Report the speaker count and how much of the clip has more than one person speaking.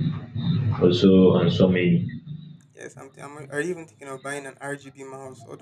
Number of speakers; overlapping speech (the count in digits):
2, no overlap